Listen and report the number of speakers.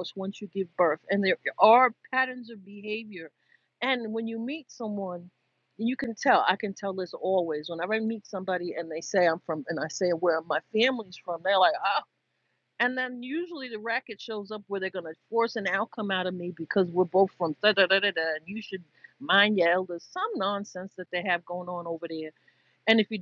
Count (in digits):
1